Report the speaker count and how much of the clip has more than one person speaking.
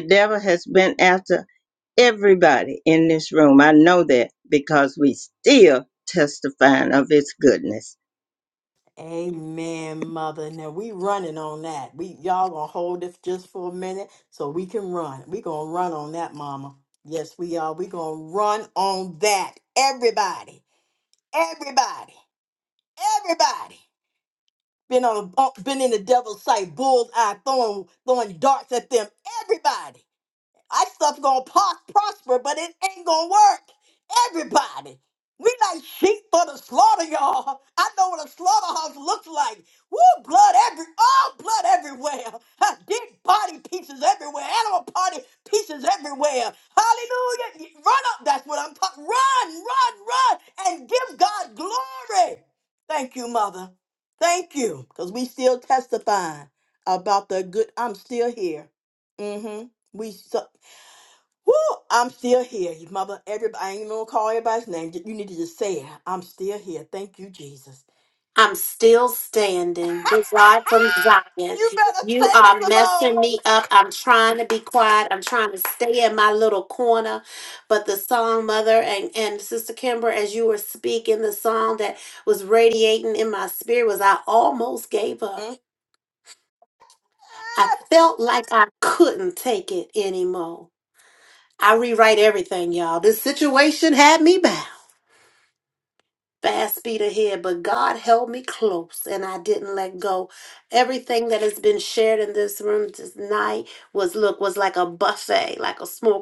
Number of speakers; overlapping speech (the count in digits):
3, about 1%